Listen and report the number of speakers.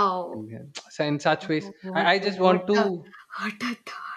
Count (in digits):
2